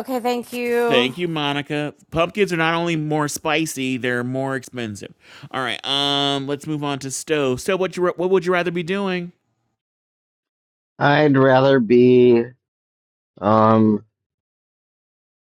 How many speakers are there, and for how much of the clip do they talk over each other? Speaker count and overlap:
3, about 2%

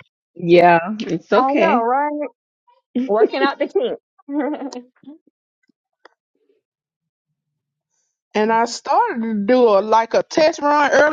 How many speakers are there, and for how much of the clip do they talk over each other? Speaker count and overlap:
3, about 3%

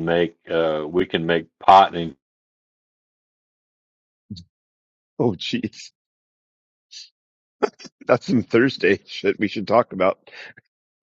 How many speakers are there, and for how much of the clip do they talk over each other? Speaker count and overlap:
2, no overlap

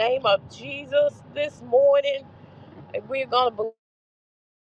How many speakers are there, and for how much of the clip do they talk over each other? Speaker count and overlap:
1, no overlap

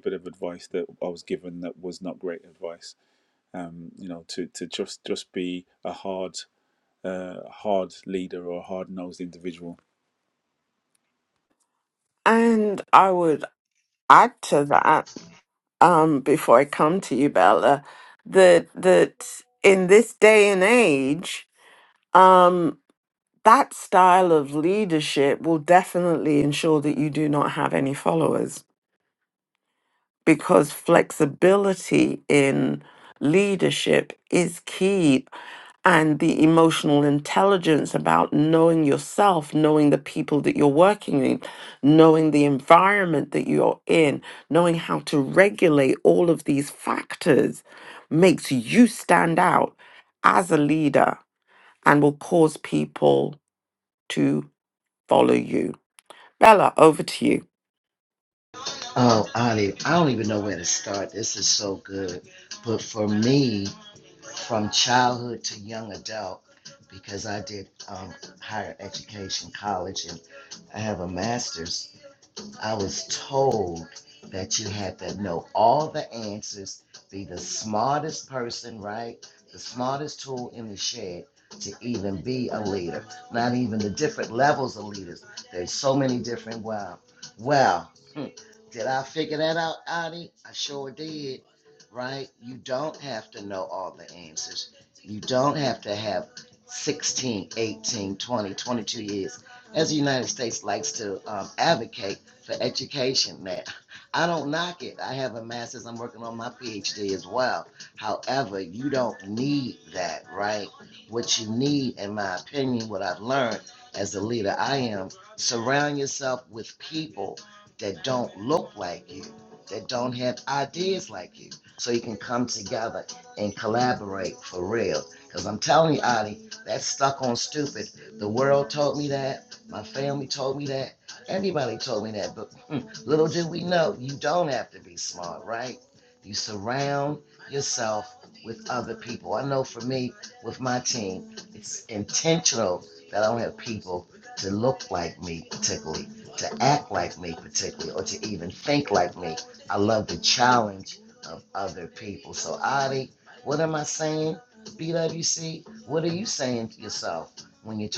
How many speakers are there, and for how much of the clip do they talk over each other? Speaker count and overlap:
3, no overlap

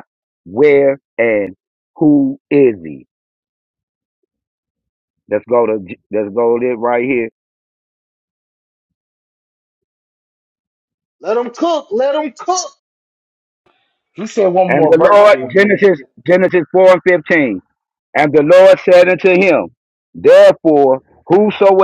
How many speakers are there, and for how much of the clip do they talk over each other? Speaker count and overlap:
3, about 5%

